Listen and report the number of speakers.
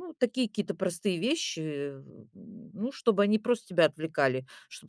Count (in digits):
1